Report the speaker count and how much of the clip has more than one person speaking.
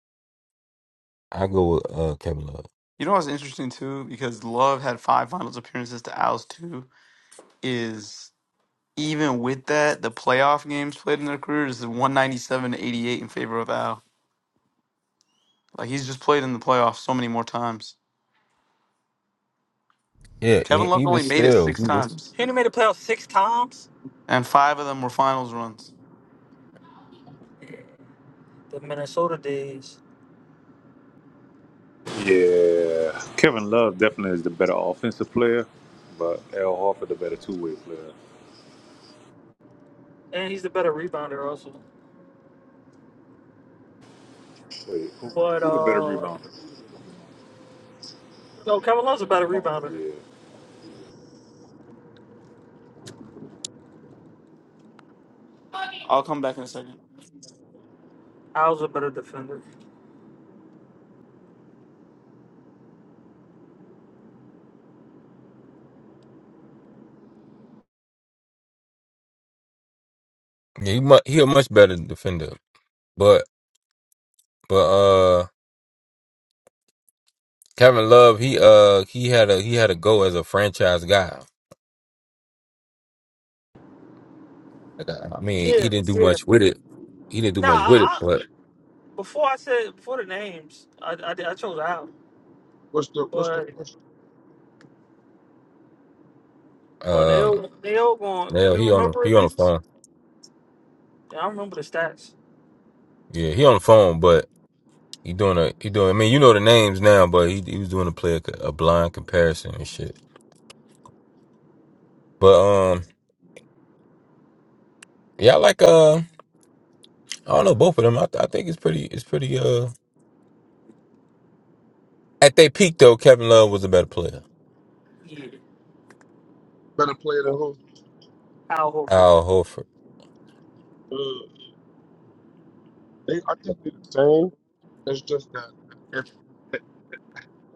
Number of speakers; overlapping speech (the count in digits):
5, about 5%